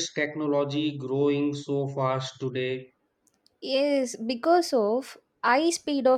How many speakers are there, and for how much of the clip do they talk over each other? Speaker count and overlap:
two, no overlap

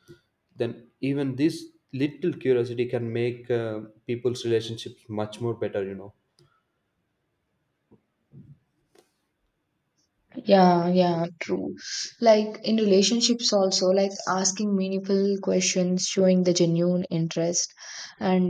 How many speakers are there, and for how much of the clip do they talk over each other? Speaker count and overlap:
two, no overlap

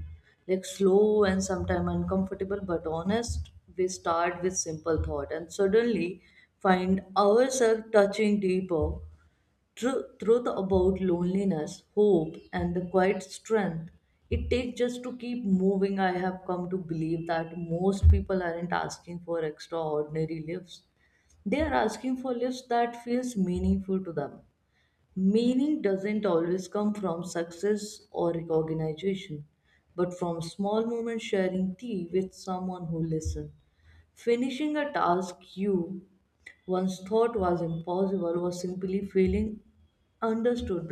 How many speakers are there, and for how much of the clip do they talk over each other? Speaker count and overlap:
one, no overlap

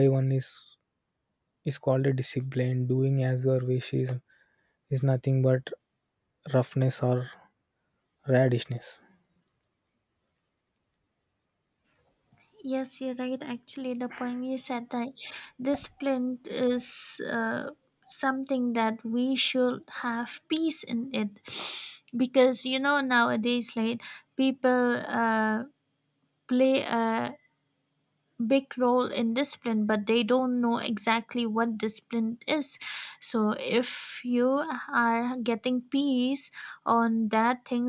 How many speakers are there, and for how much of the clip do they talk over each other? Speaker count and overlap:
two, no overlap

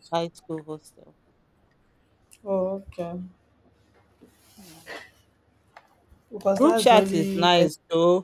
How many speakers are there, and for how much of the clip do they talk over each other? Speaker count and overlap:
two, about 14%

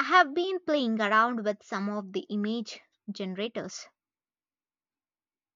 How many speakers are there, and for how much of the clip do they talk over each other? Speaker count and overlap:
one, no overlap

